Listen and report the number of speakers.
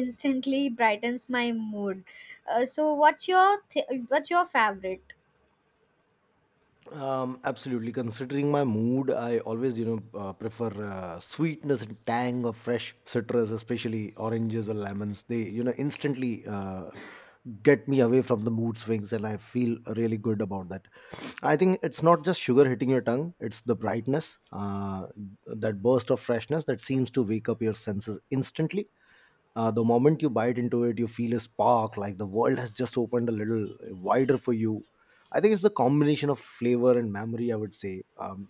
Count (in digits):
2